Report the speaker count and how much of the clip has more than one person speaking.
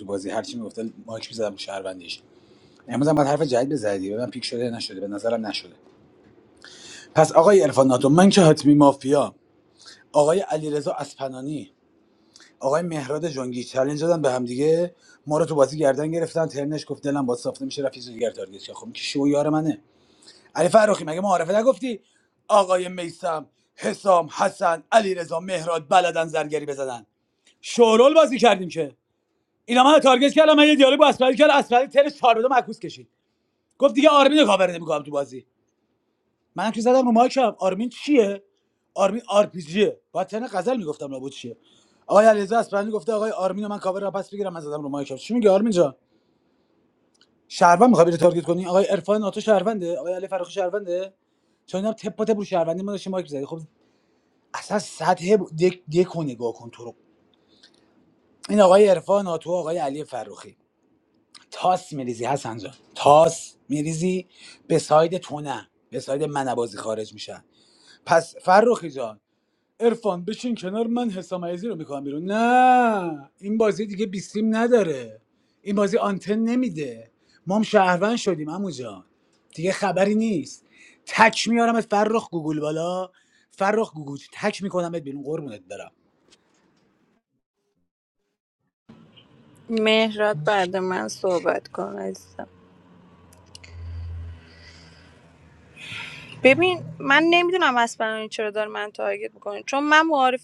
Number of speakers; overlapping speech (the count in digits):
2, no overlap